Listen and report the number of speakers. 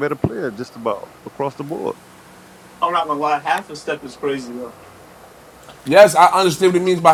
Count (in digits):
3